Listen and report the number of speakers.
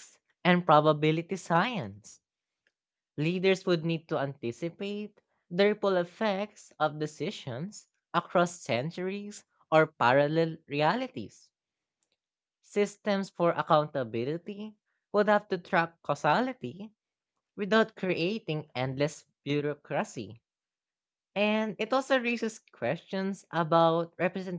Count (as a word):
one